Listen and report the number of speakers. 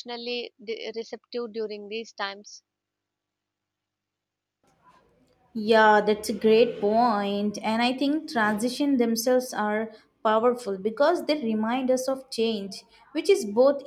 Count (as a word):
two